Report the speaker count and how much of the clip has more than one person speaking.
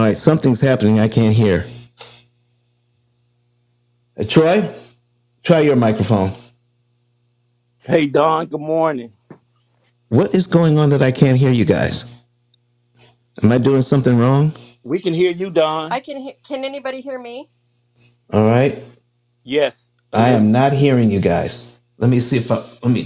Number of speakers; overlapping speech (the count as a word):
three, about 1%